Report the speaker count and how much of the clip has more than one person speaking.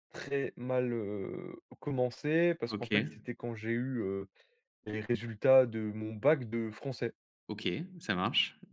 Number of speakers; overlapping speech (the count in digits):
2, about 5%